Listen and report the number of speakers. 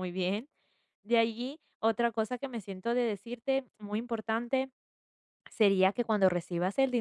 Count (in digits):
1